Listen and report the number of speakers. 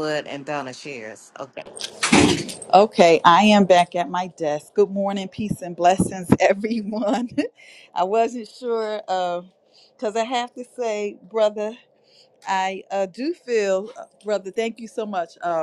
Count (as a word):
two